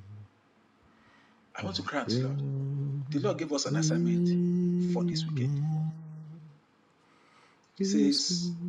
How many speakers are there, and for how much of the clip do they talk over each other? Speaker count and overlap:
two, about 15%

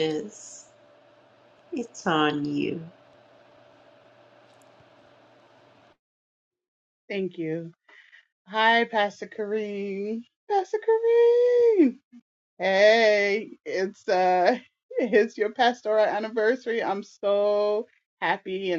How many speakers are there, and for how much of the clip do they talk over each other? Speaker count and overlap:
two, no overlap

